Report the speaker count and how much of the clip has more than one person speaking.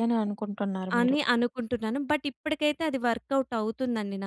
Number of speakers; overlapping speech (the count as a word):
two, about 5%